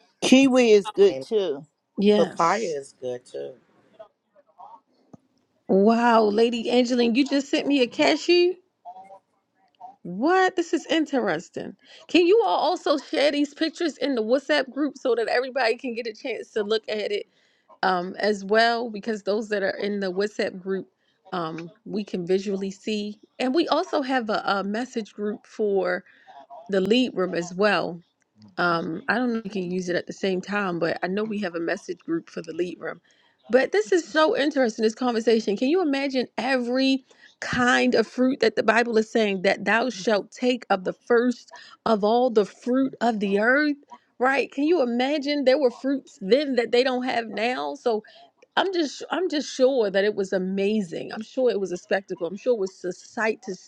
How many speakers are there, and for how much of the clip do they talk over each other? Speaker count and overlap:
3, about 1%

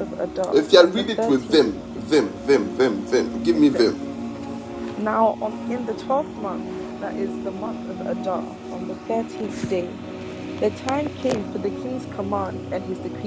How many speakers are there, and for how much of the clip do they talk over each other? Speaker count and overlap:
2, about 10%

